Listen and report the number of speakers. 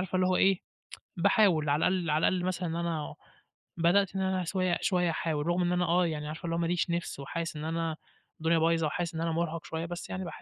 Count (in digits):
1